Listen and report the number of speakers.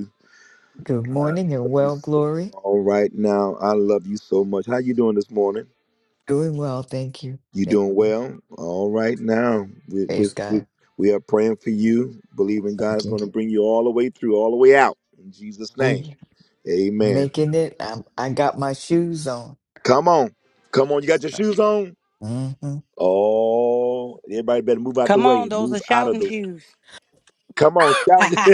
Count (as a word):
three